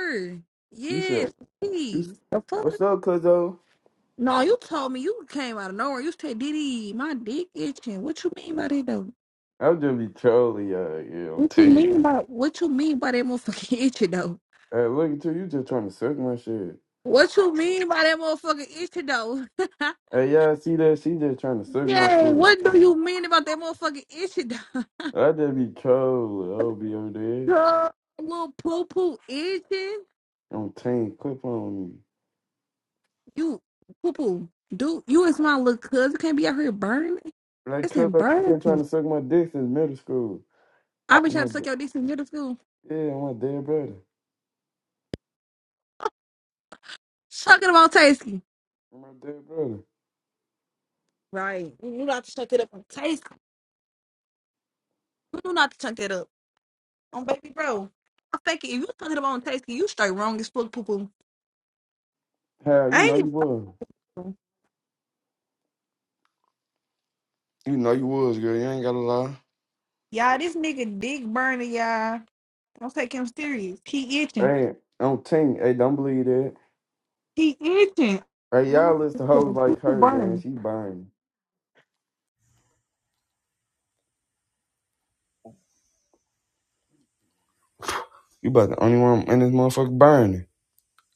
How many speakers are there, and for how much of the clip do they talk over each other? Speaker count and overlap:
two, about 6%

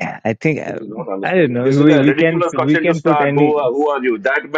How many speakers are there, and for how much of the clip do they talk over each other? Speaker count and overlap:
two, about 65%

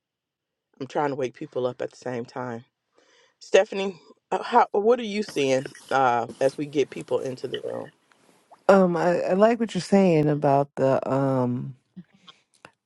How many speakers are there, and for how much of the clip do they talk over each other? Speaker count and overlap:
two, no overlap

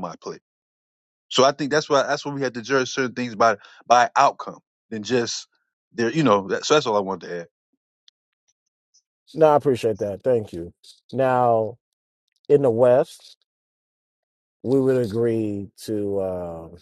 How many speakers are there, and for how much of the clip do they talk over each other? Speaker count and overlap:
two, no overlap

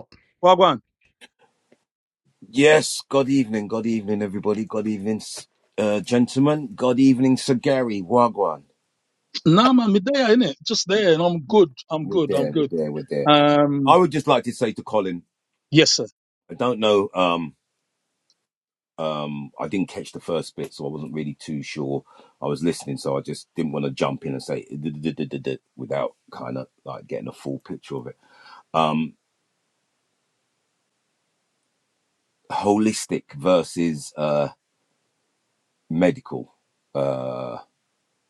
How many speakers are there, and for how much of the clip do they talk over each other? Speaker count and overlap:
two, about 2%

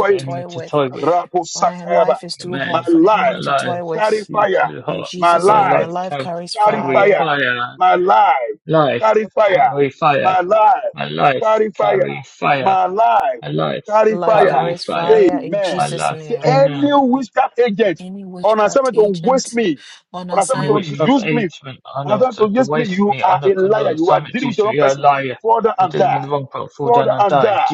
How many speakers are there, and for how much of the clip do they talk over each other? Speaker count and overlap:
three, about 60%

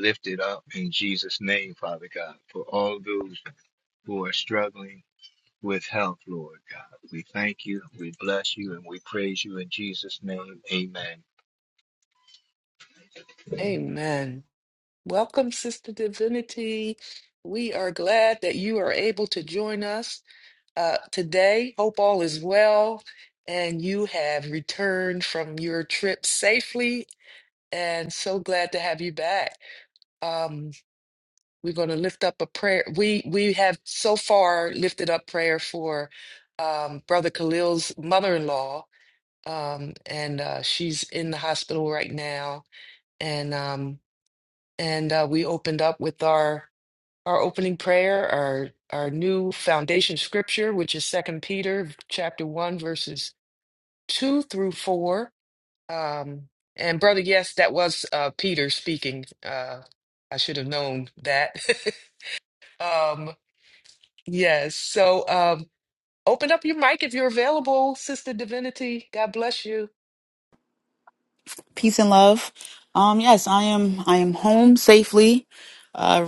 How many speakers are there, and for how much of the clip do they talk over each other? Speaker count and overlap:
three, no overlap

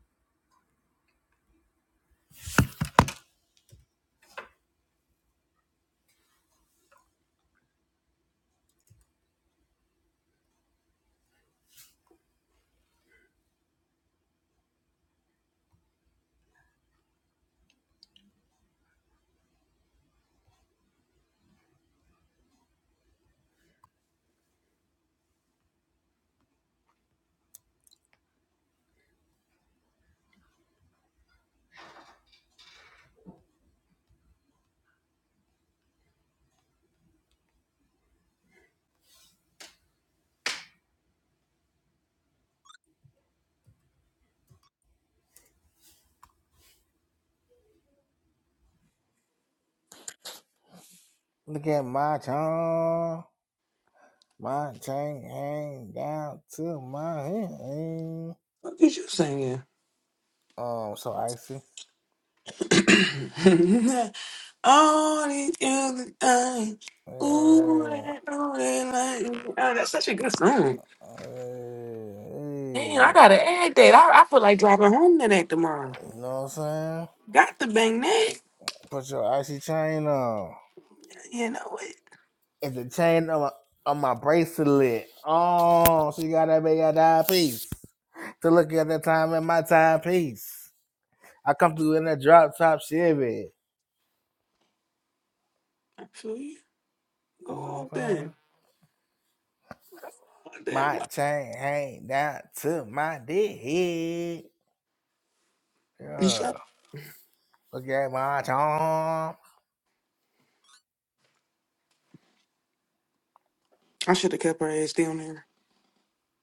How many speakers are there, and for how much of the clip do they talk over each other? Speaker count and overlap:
two, about 2%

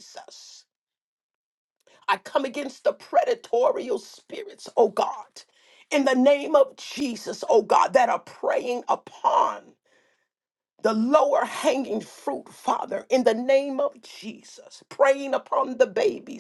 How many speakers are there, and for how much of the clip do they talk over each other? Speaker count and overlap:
one, no overlap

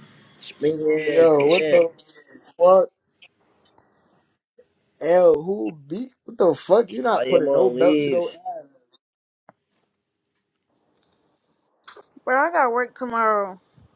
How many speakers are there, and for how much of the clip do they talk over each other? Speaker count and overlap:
three, about 15%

